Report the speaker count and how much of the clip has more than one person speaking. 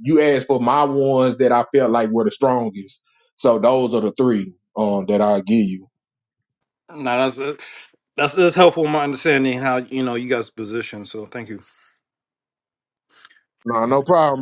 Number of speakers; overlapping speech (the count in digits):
2, no overlap